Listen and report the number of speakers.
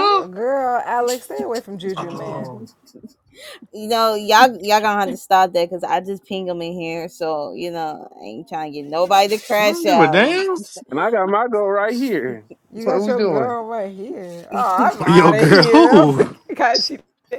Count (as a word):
four